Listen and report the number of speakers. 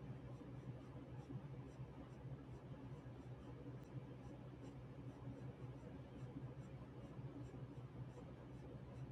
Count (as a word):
zero